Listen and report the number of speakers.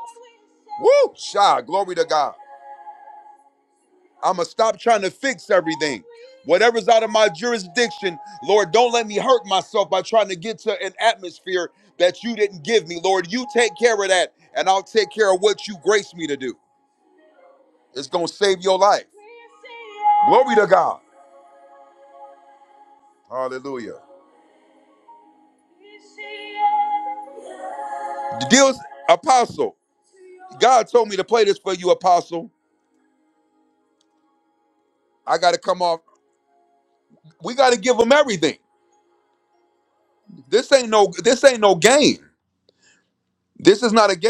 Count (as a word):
one